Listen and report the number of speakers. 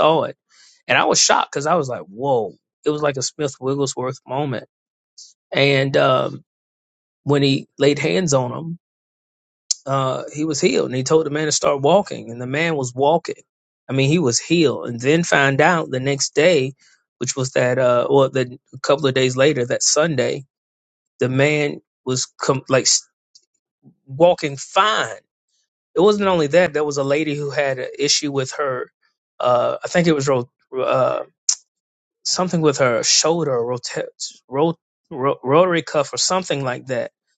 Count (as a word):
one